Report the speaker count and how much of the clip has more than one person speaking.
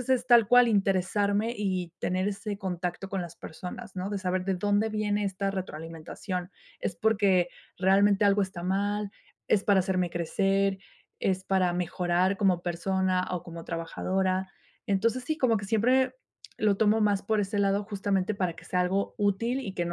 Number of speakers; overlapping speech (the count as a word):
one, no overlap